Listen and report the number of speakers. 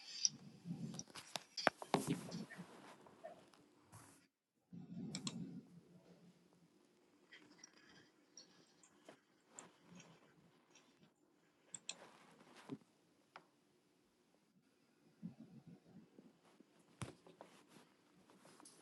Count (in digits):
0